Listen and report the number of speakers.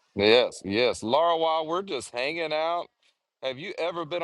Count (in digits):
1